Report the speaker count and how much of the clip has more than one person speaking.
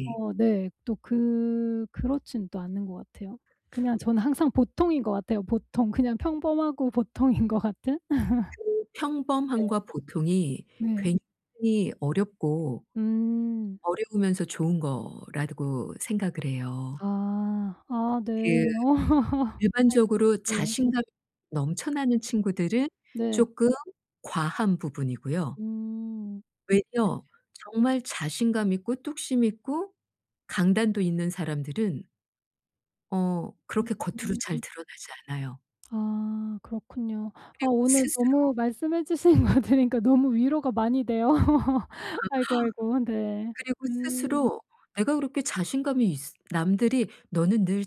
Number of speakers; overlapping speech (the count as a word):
two, about 7%